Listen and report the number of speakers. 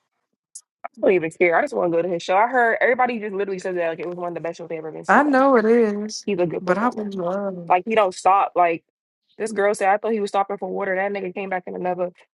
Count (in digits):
2